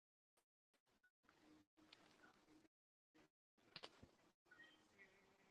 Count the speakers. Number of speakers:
0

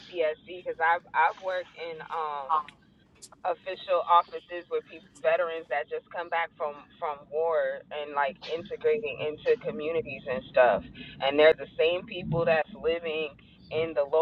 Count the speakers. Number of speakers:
1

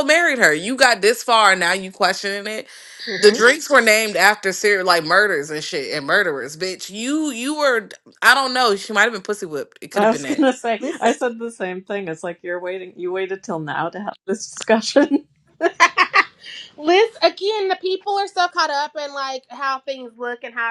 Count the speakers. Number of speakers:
3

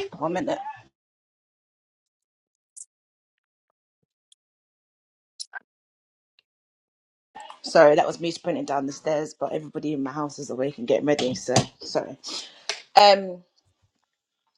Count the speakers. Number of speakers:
1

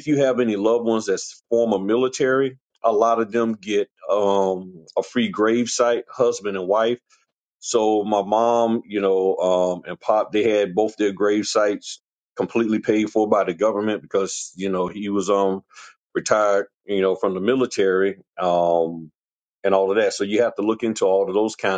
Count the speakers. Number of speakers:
1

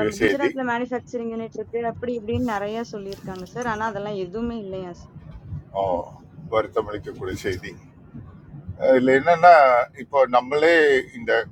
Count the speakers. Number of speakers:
2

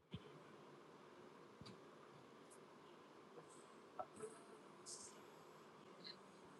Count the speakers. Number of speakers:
0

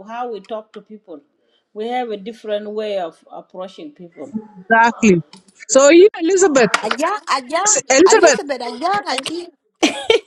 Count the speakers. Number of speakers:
3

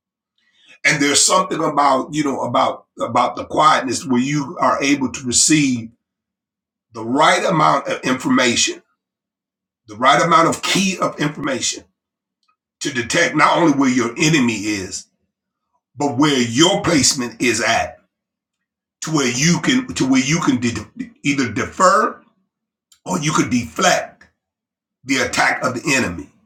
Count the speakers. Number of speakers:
1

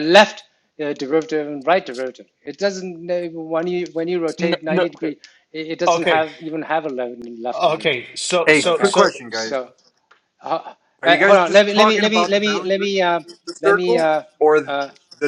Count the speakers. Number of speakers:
3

